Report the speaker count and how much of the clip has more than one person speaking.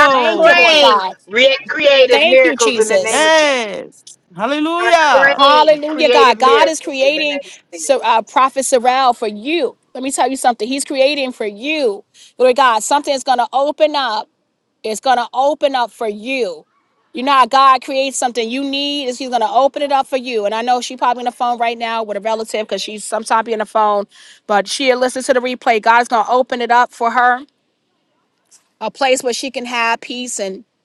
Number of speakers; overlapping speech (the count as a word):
three, about 17%